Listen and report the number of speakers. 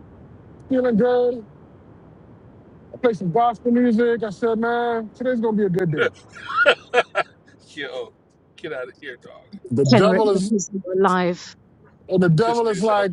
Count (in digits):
3